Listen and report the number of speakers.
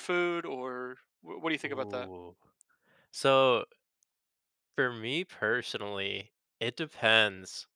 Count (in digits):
2